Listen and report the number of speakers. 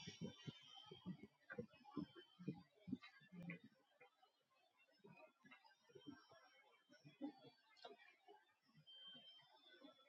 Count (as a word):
zero